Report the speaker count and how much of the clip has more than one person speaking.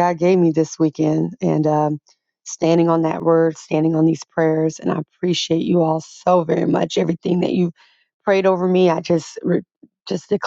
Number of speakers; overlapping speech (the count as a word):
one, no overlap